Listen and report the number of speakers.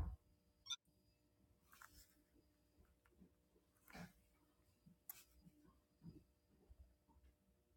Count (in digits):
0